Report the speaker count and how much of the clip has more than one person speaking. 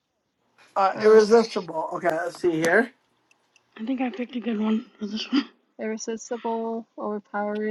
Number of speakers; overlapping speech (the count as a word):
three, about 4%